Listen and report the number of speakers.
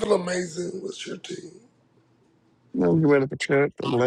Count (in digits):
2